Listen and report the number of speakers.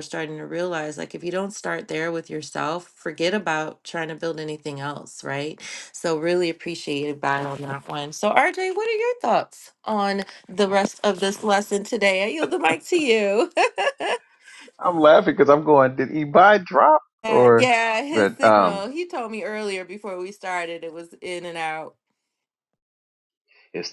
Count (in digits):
2